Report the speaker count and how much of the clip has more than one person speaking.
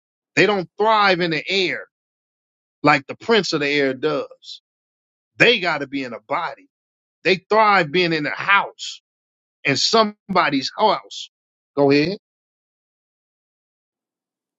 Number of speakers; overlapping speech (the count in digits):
1, no overlap